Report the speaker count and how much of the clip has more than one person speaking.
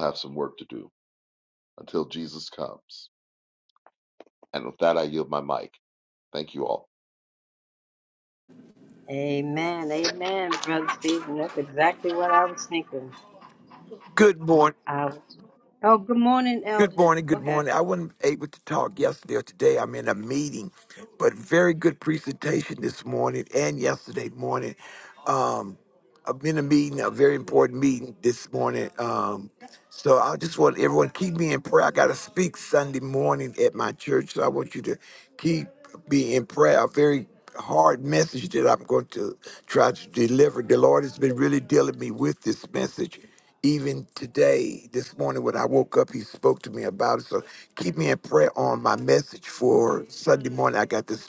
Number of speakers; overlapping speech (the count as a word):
three, about 1%